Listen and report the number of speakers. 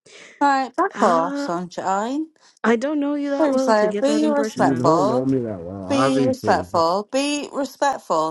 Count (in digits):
3